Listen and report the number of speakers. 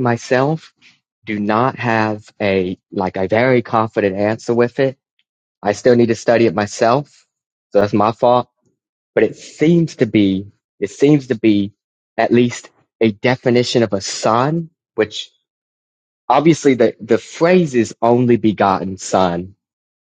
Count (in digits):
1